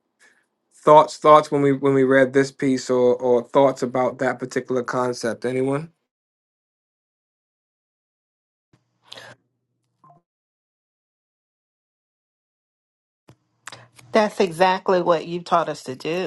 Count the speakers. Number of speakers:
2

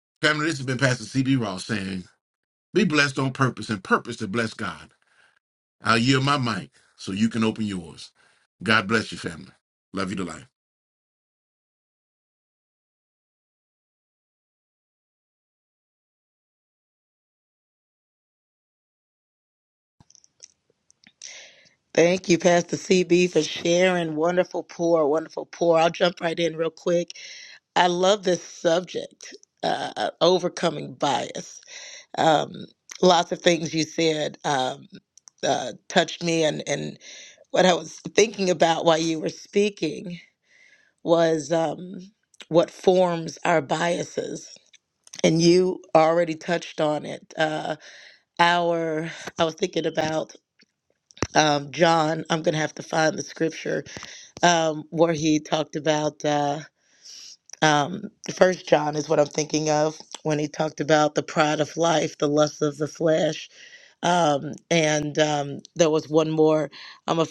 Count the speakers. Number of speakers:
2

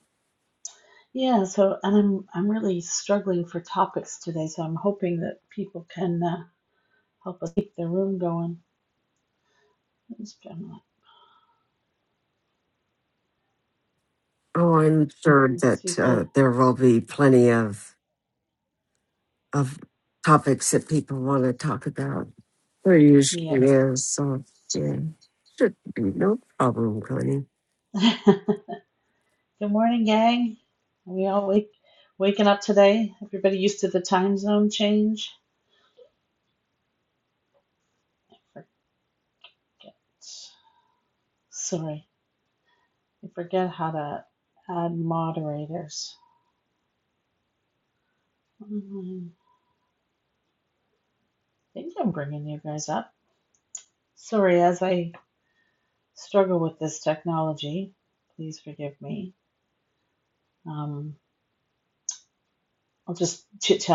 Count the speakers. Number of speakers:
2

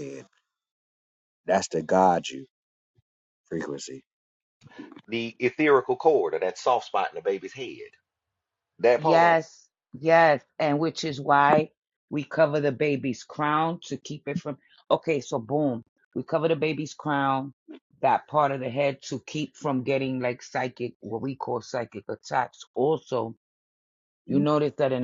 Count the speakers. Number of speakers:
3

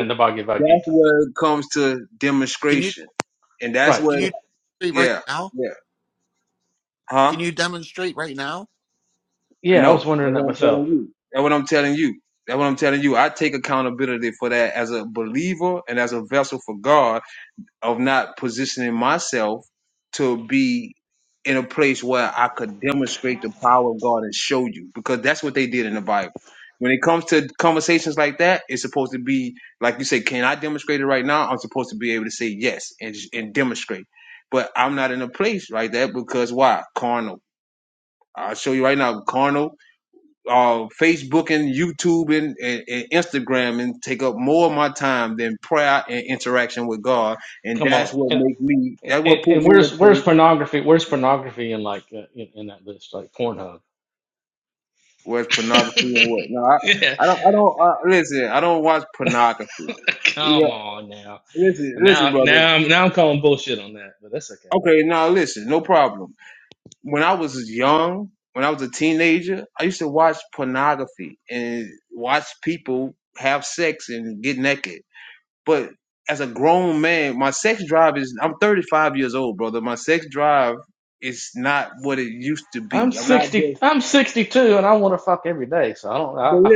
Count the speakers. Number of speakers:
3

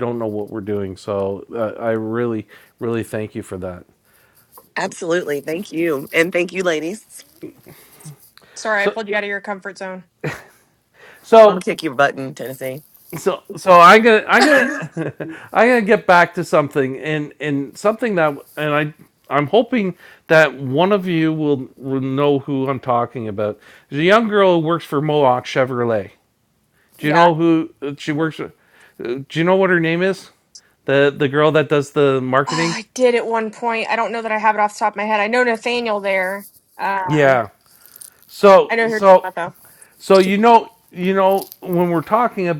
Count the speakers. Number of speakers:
3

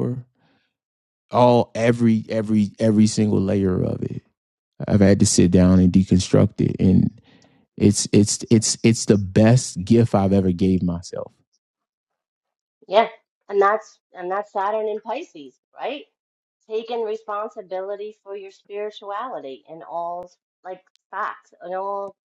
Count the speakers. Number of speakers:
2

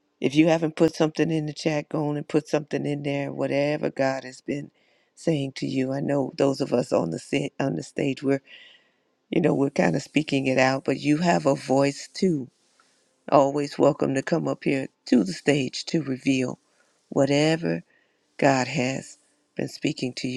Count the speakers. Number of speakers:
1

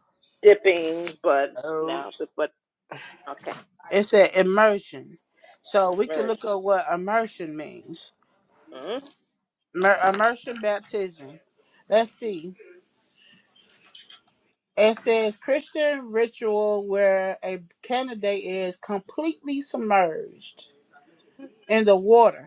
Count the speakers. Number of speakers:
2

